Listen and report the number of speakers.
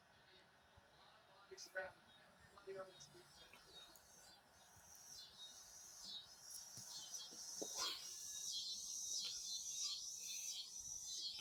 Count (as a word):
zero